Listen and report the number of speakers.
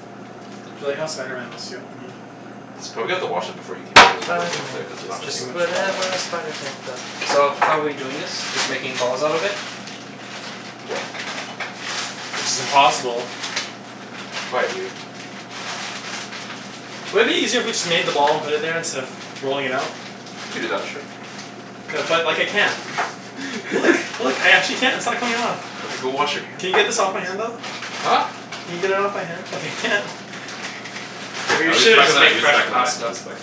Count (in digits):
3